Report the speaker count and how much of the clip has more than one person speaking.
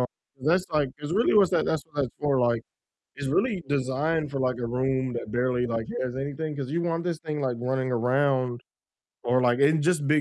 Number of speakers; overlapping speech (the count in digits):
1, no overlap